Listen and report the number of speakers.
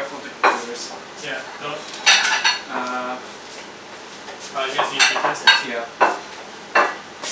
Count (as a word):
two